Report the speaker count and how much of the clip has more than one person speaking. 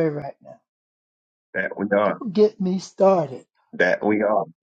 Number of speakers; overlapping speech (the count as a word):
two, no overlap